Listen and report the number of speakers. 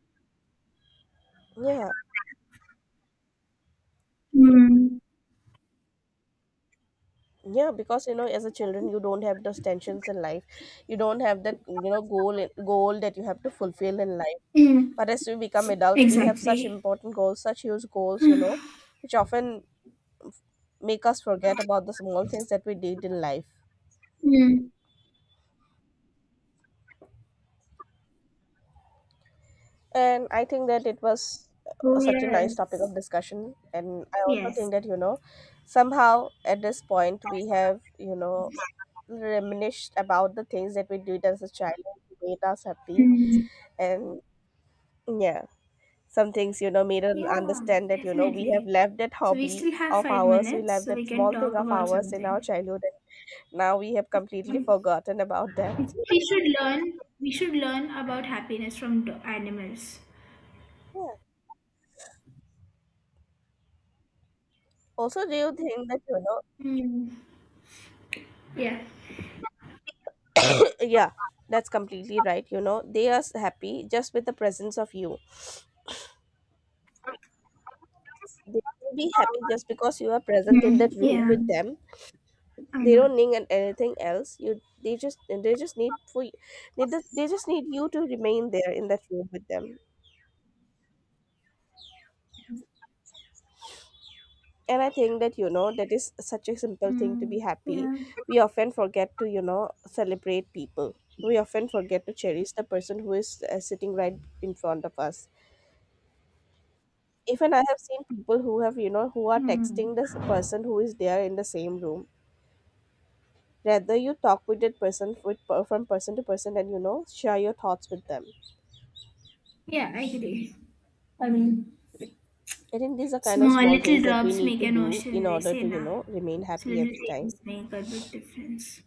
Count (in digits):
2